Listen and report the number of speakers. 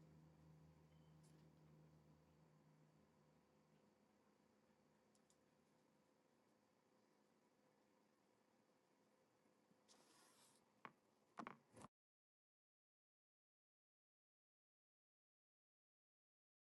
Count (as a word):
zero